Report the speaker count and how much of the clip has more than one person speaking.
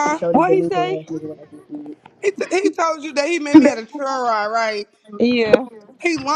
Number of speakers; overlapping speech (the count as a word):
three, about 14%